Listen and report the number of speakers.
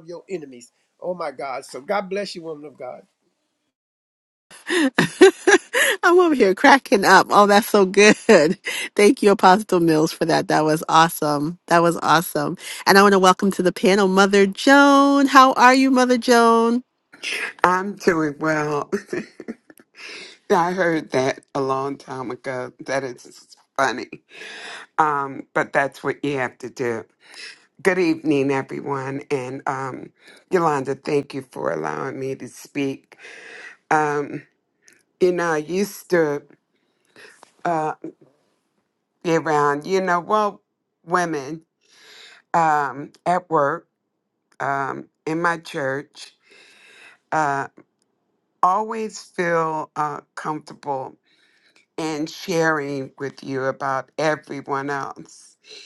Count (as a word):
three